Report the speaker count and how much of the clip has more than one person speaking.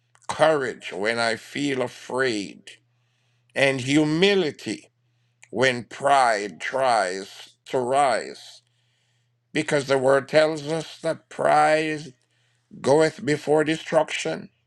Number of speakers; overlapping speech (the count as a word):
one, no overlap